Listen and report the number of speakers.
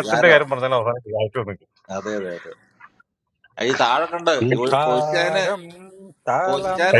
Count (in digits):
3